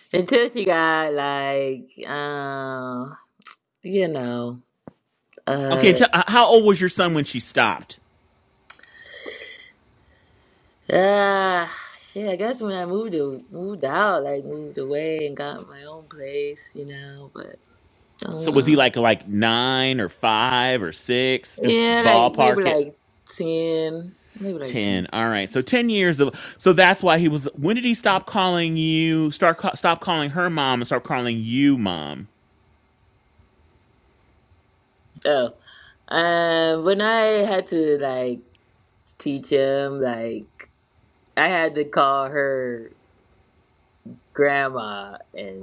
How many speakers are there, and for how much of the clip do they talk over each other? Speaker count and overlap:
2, about 4%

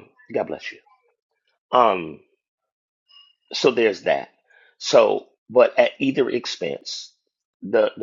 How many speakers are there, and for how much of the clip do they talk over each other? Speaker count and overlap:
1, no overlap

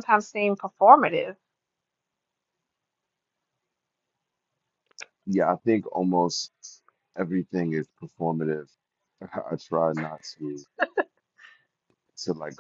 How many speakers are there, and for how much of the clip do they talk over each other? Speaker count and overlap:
2, no overlap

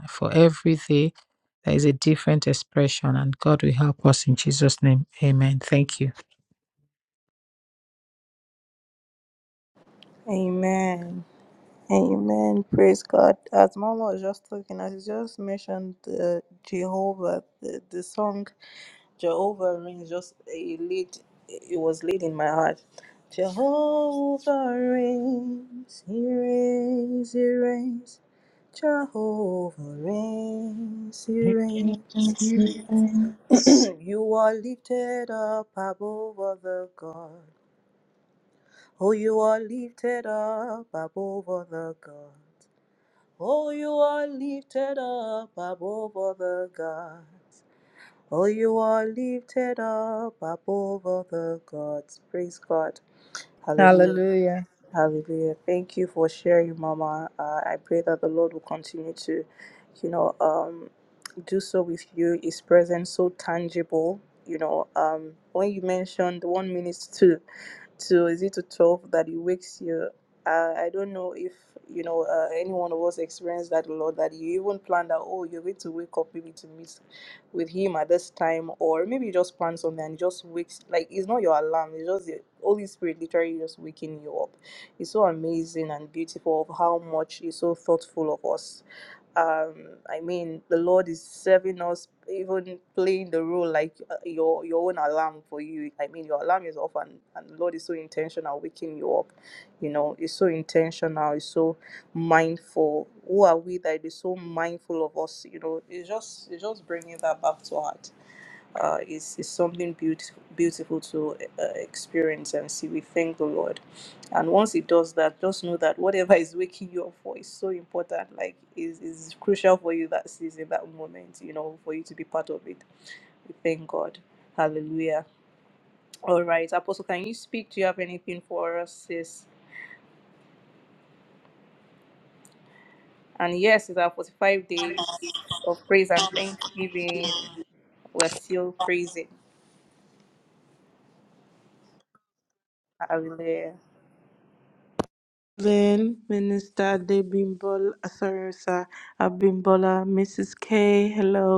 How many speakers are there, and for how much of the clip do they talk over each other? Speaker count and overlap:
3, under 1%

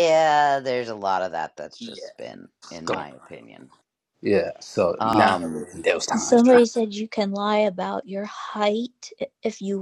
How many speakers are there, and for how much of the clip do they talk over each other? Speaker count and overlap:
3, about 14%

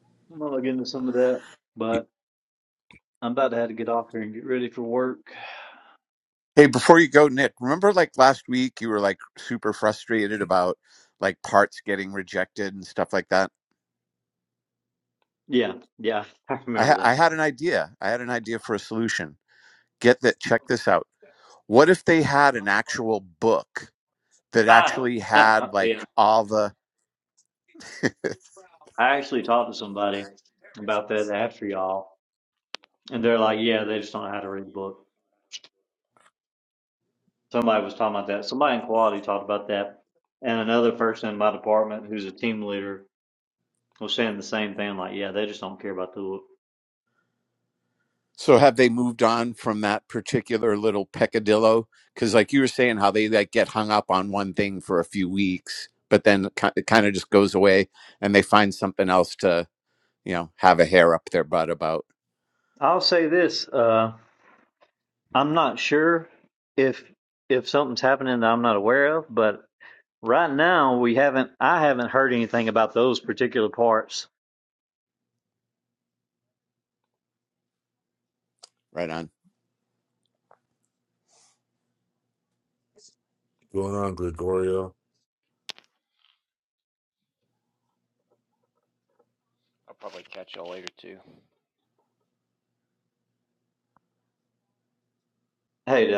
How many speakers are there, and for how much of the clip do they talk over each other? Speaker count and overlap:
4, about 1%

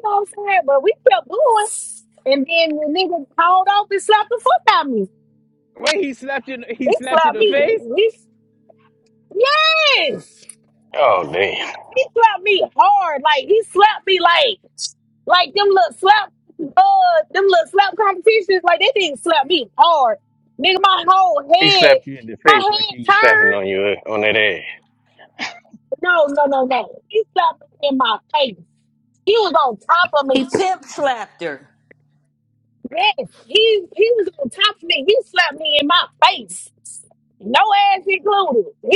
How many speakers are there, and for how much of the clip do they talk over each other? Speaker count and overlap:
4, about 7%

